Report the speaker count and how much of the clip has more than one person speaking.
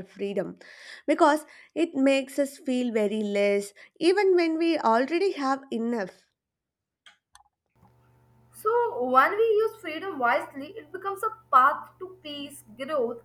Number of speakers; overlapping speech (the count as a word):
two, no overlap